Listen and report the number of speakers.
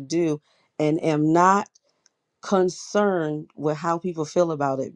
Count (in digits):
1